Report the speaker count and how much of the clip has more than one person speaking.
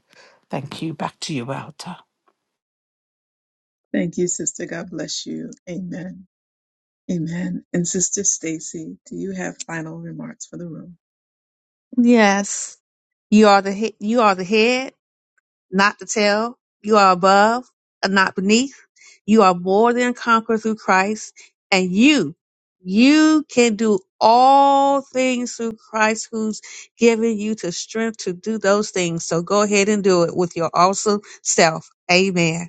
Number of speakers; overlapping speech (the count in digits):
3, no overlap